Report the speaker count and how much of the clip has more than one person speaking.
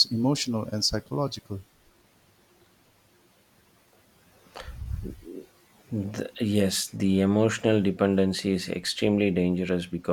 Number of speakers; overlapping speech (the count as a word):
two, no overlap